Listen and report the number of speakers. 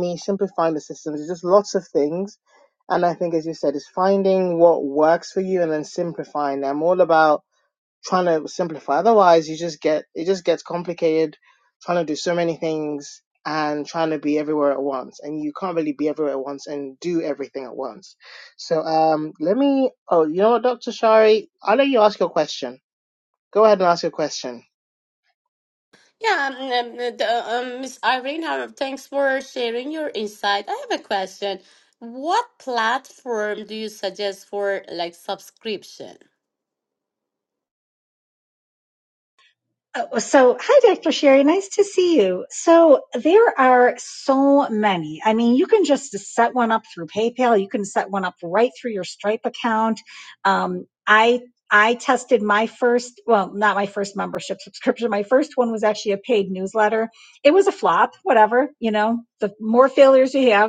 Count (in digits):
3